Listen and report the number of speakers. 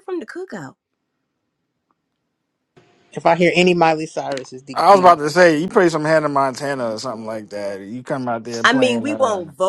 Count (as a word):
three